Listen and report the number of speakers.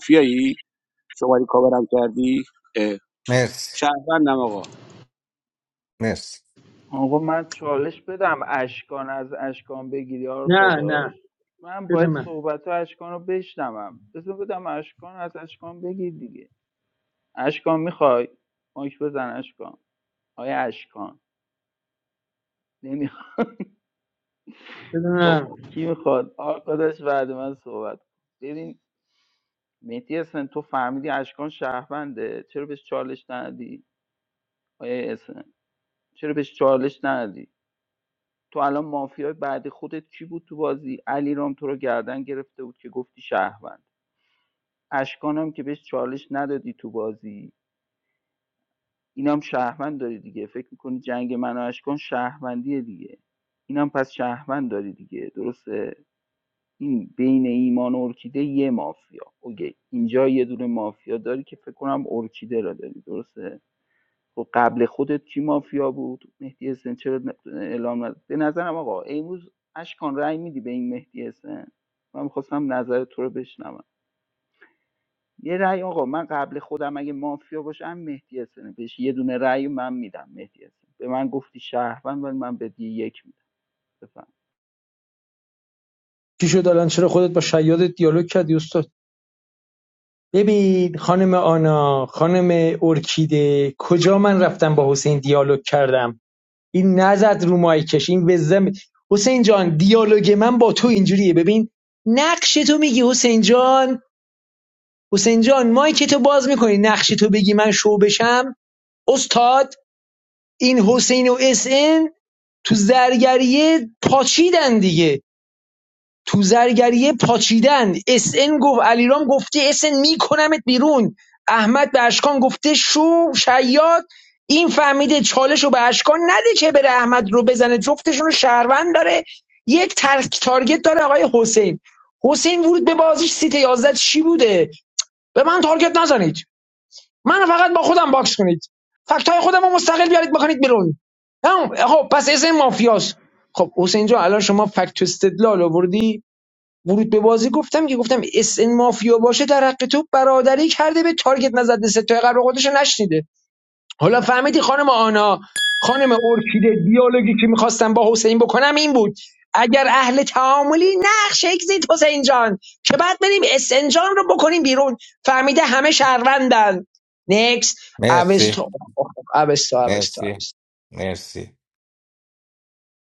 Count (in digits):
4